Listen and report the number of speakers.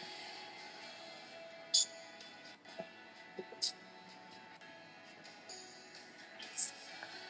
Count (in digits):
0